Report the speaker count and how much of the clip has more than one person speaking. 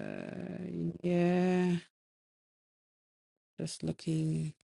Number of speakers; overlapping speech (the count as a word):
one, no overlap